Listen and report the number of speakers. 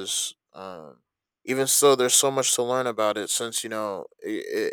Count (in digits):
1